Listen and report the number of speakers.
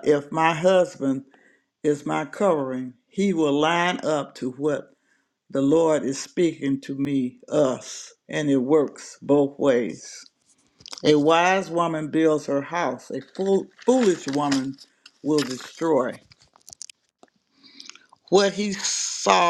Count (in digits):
1